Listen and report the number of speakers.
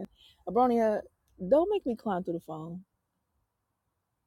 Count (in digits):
1